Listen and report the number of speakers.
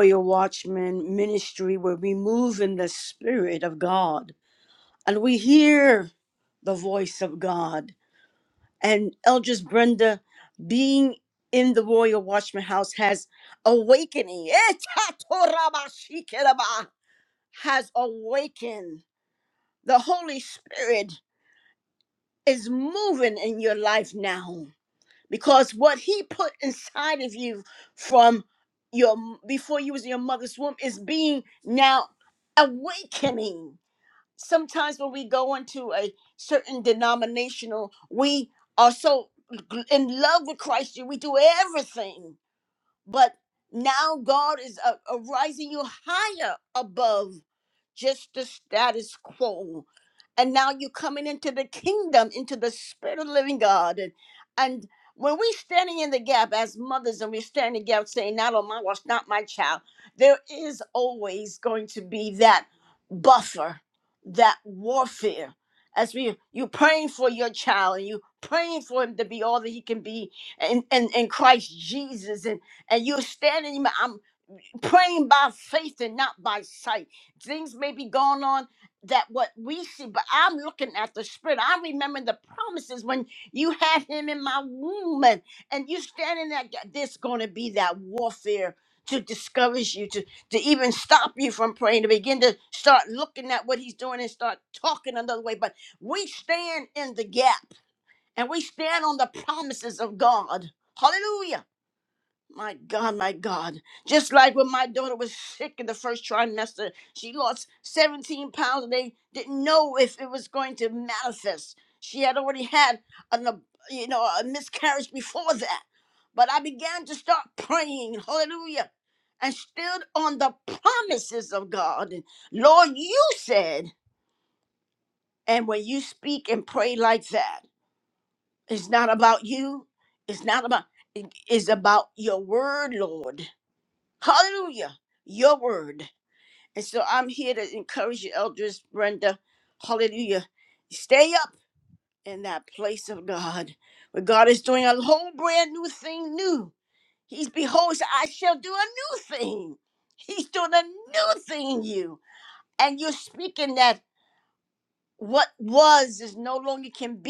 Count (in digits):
1